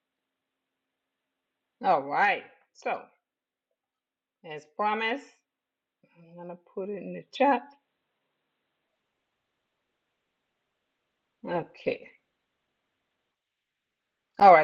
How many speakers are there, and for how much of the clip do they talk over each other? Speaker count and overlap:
one, no overlap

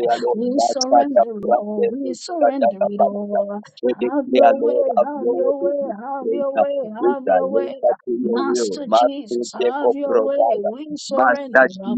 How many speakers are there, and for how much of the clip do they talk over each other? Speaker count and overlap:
two, about 83%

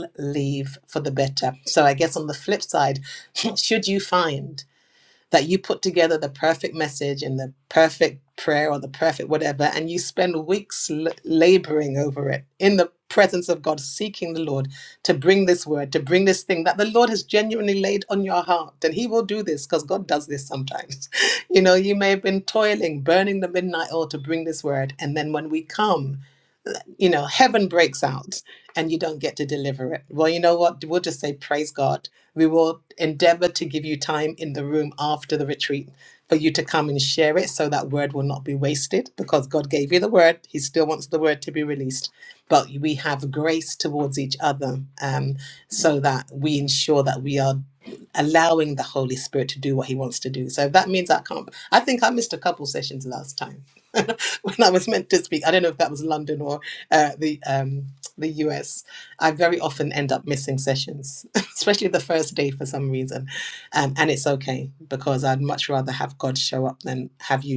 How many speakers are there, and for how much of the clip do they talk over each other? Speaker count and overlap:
one, no overlap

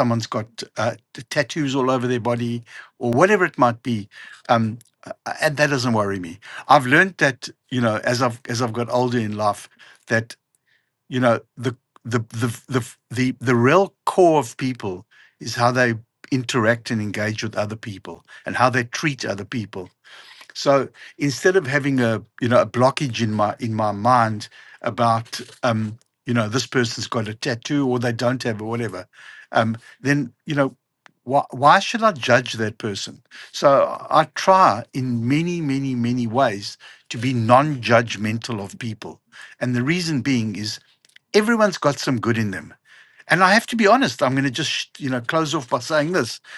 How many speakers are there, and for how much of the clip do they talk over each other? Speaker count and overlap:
one, no overlap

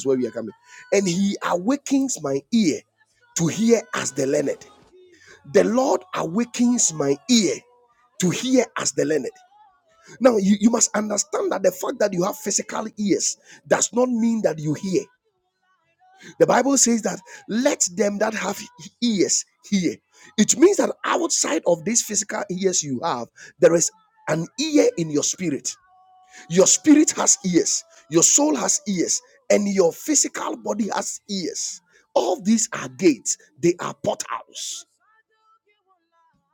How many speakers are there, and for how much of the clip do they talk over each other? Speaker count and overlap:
one, no overlap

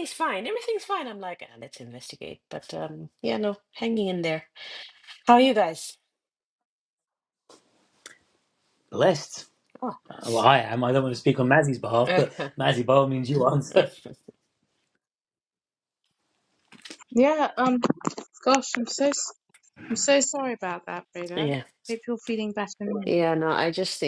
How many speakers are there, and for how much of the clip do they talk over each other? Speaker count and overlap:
three, about 3%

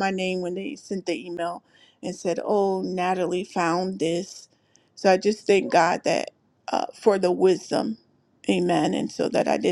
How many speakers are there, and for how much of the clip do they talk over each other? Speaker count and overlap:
one, no overlap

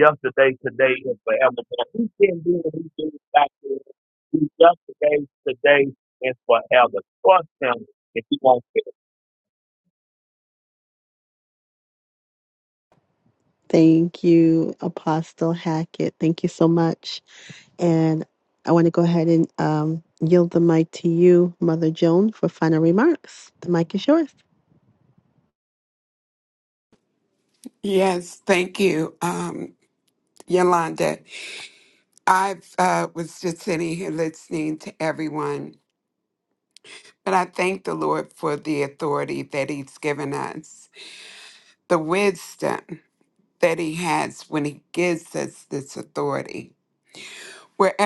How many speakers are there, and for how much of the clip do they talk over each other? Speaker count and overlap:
three, no overlap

